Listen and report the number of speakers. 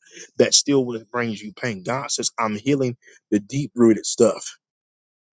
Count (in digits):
1